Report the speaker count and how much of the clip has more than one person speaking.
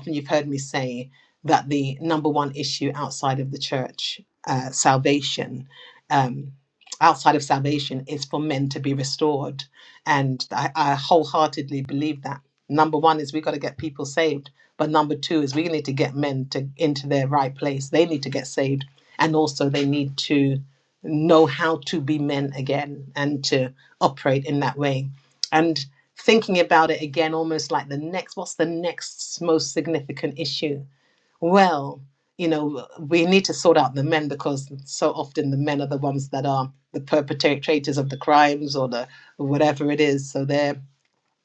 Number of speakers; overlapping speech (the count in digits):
1, no overlap